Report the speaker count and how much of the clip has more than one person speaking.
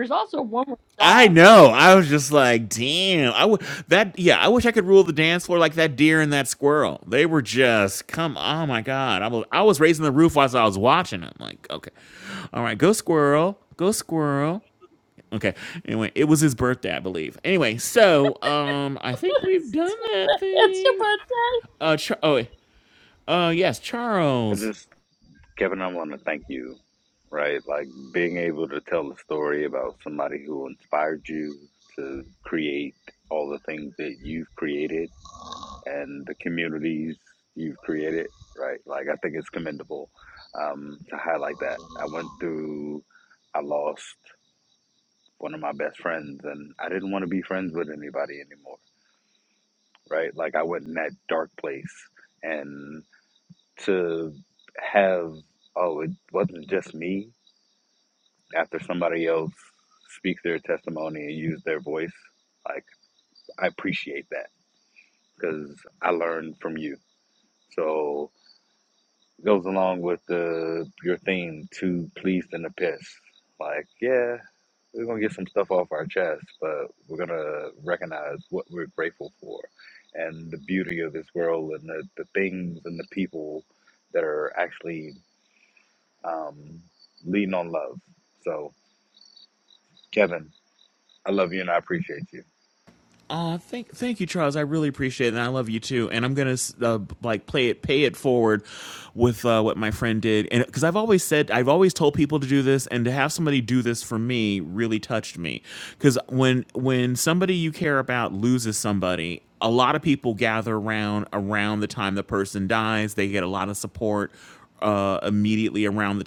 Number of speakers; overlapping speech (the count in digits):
3, about 1%